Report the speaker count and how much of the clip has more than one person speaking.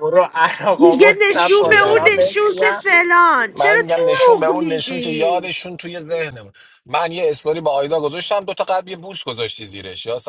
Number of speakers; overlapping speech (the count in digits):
3, about 40%